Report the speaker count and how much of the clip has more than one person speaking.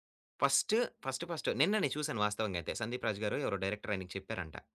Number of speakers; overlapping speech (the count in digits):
1, no overlap